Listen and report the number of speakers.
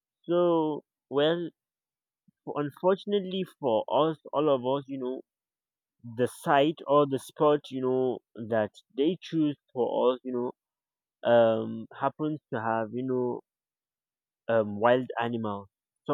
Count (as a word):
one